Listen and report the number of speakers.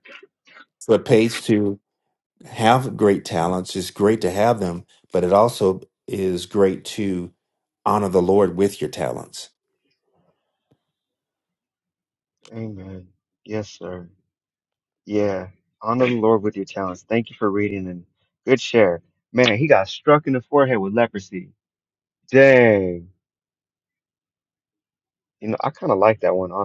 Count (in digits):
2